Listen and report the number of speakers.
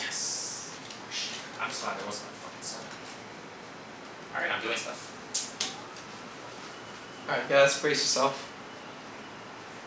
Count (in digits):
2